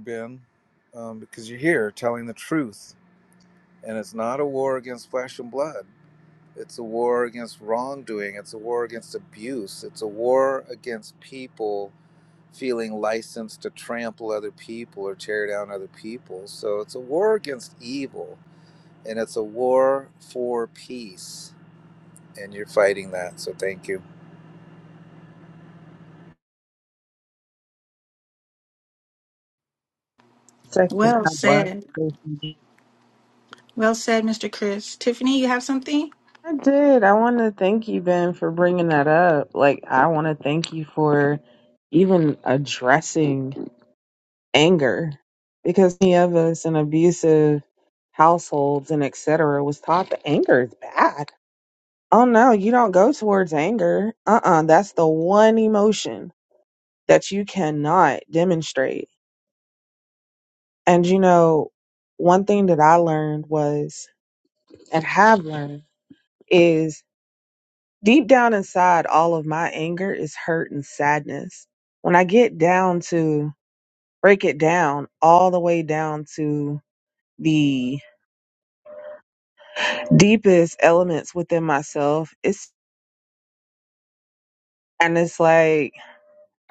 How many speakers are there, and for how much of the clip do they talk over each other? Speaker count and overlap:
3, about 1%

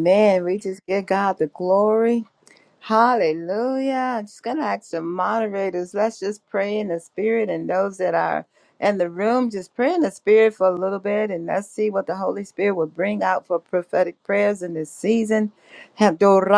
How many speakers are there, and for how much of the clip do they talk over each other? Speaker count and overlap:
1, no overlap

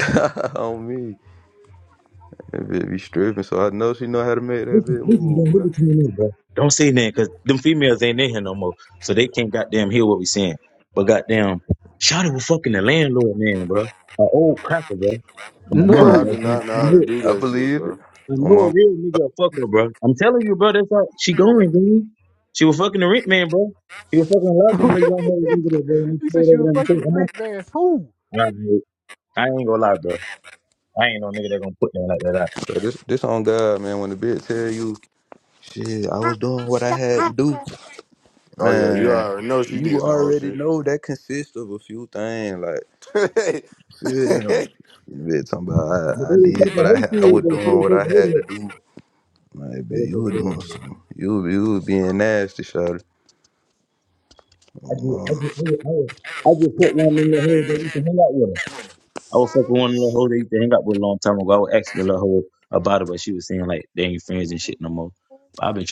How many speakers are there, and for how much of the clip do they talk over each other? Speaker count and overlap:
4, about 14%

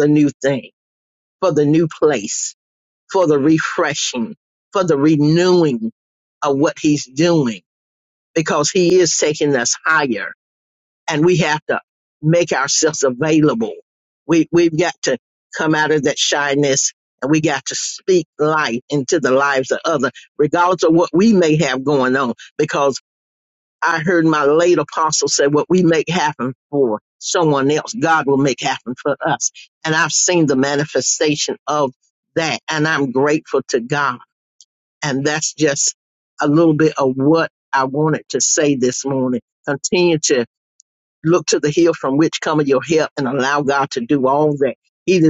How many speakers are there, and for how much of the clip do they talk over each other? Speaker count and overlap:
1, no overlap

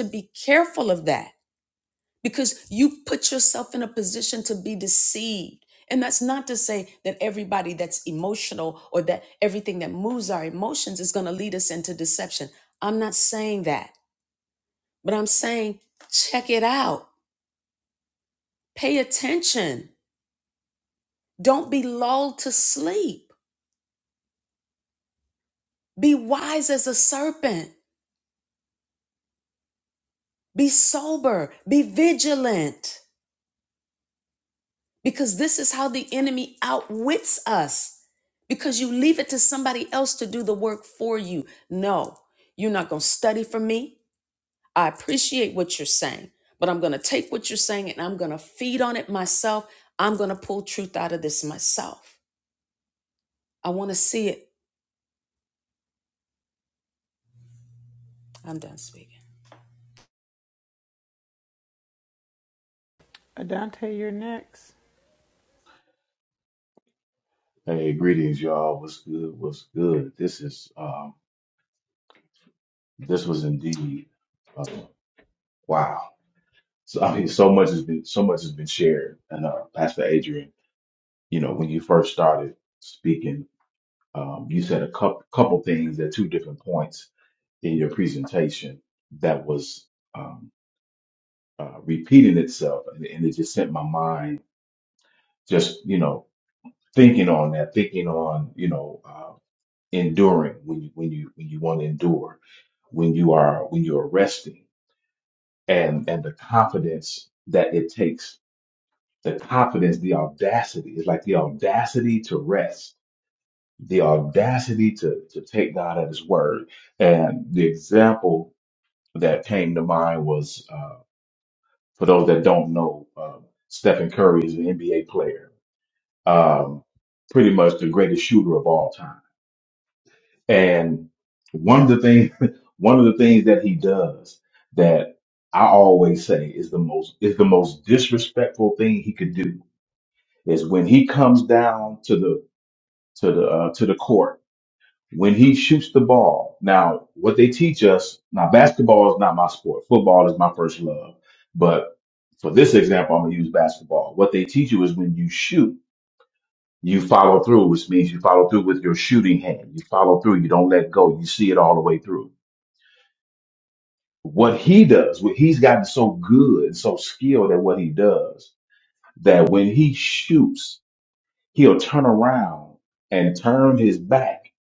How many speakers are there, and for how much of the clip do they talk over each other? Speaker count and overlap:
3, no overlap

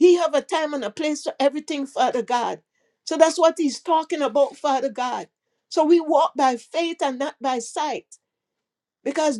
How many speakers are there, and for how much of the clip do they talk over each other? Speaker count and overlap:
1, no overlap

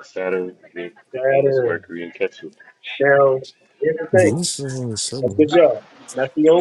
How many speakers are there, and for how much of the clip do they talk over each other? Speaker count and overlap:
3, about 14%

